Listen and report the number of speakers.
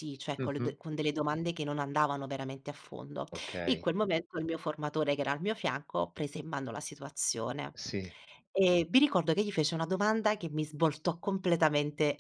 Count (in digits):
2